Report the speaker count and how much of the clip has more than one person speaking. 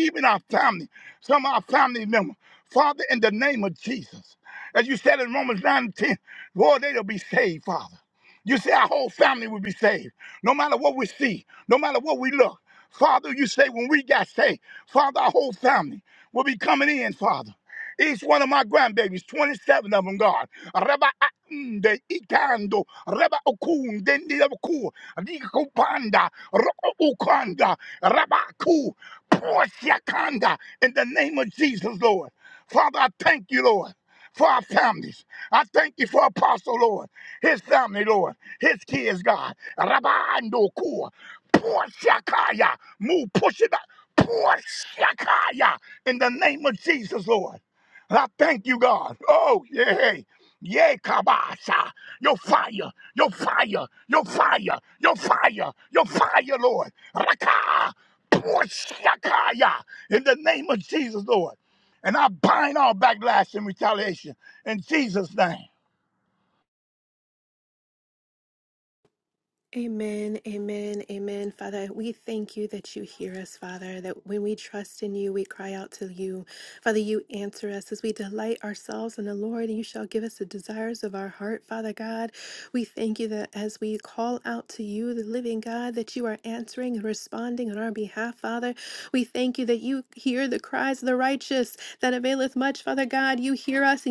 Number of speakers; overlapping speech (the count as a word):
two, no overlap